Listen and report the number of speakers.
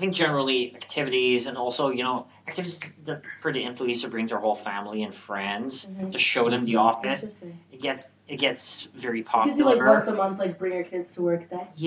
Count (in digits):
2